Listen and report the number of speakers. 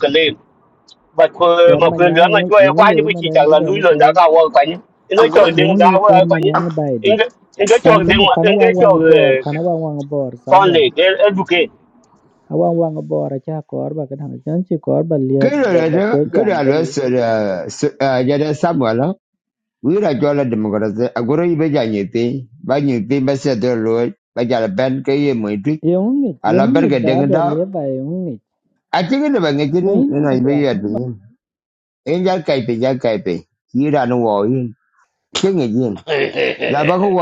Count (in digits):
4